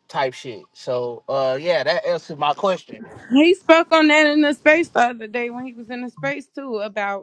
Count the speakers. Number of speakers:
2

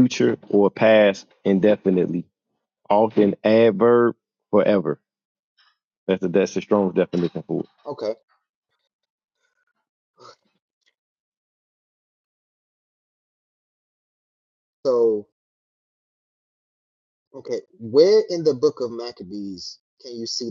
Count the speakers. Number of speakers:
2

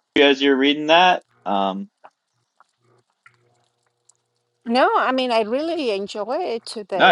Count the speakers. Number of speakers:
2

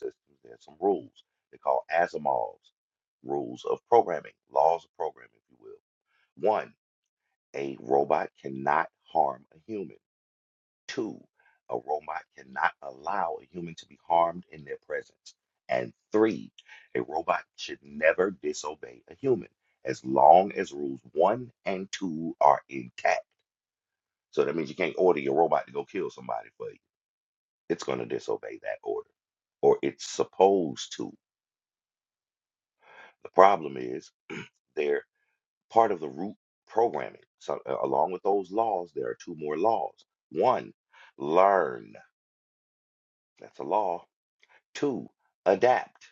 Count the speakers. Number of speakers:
1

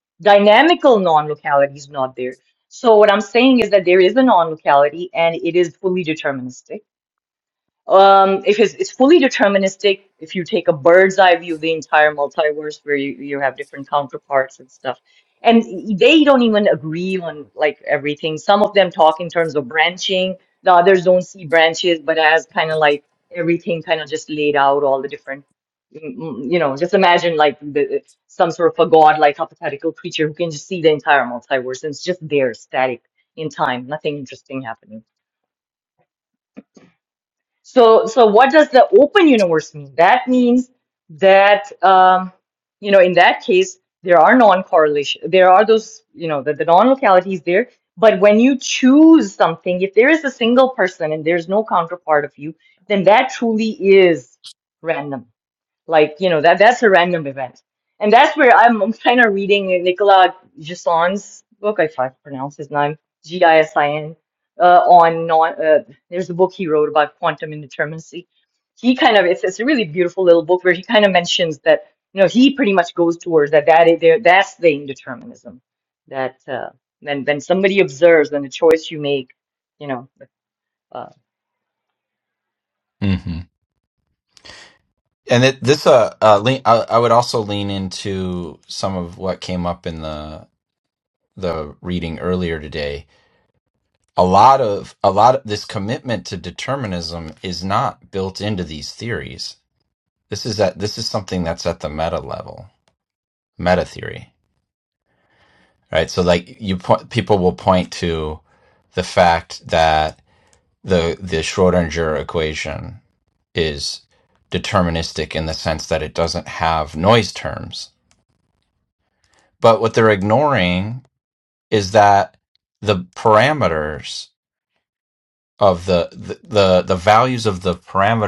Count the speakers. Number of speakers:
2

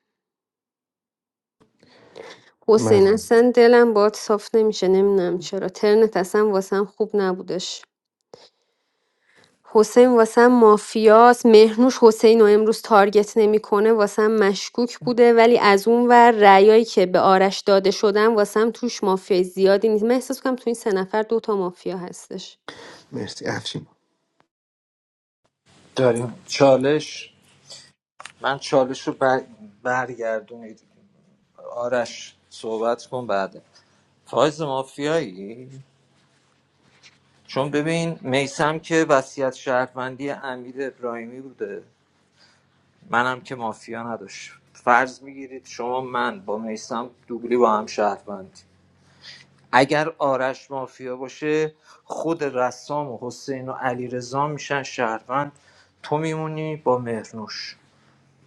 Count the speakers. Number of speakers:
3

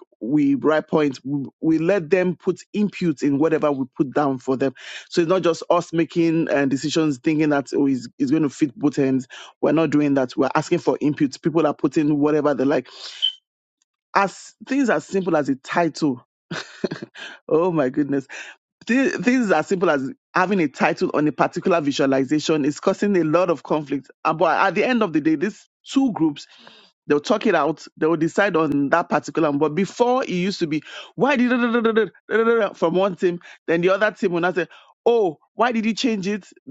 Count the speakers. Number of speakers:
1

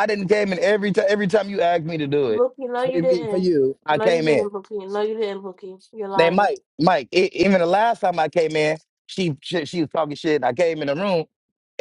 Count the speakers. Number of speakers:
2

